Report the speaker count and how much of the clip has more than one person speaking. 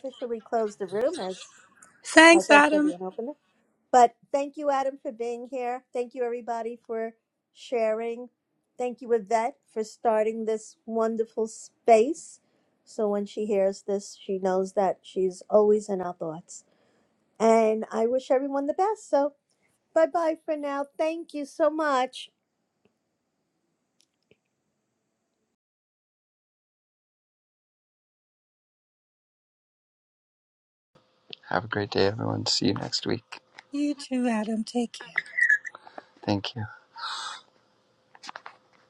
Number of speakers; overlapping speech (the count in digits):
3, about 2%